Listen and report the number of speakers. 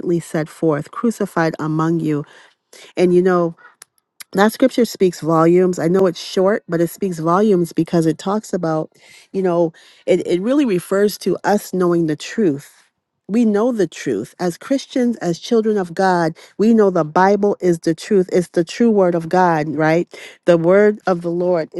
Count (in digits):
1